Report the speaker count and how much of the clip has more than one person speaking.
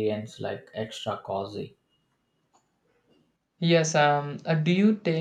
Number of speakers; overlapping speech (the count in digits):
2, no overlap